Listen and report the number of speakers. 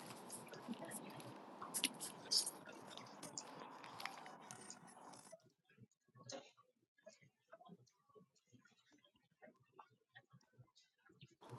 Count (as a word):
zero